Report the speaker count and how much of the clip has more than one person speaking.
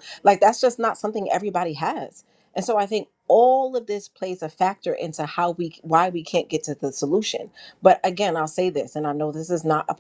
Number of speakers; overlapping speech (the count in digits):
1, no overlap